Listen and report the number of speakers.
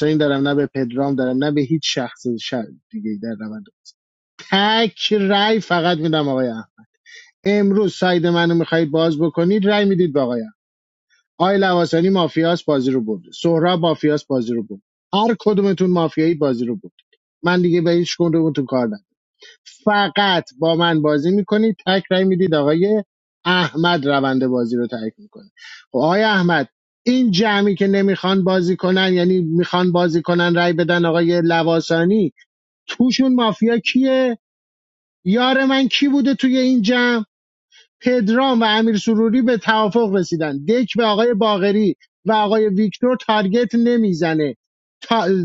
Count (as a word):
one